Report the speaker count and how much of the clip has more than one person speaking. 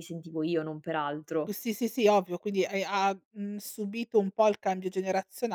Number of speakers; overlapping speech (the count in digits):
2, under 1%